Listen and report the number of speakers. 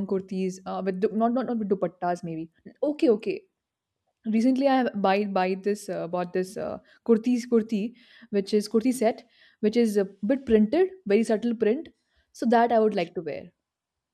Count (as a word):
one